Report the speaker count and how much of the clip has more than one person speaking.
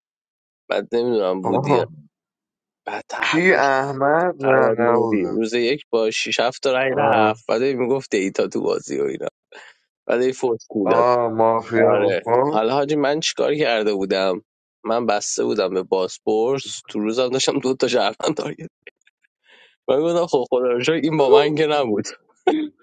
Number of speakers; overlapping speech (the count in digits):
2, about 14%